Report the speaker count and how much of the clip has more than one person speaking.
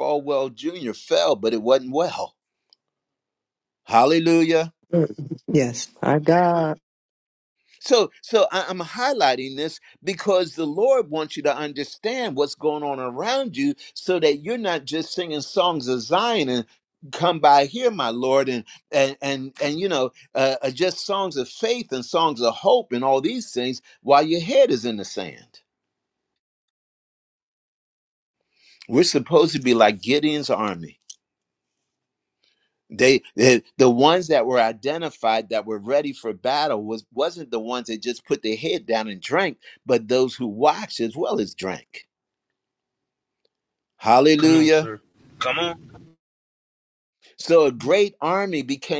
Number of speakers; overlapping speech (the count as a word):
three, about 1%